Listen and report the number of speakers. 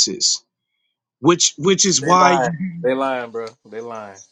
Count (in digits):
2